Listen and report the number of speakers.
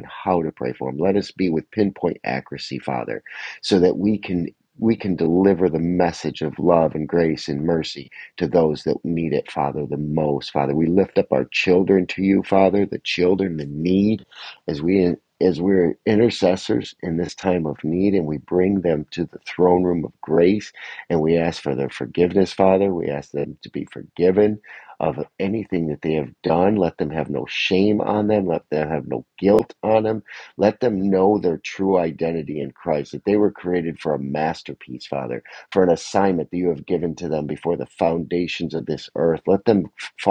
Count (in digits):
1